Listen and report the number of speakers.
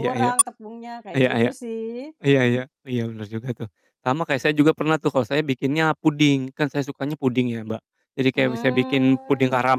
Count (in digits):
2